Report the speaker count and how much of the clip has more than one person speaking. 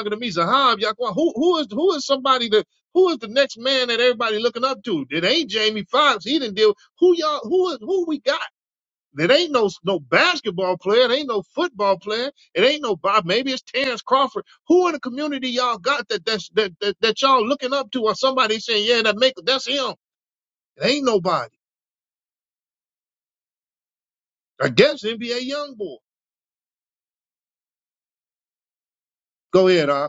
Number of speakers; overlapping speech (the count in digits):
1, no overlap